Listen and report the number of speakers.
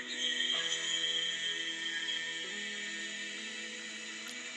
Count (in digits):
0